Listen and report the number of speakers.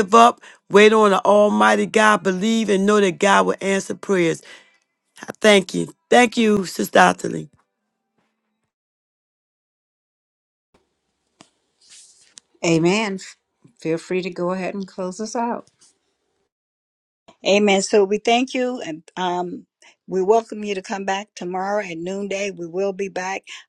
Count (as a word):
three